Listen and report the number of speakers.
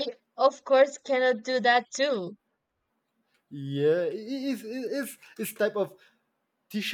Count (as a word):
two